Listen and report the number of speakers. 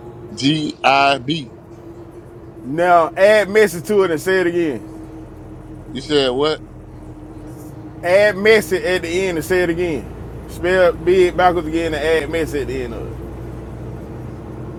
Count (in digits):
2